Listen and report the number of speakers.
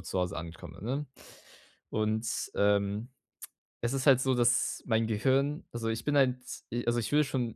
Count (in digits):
1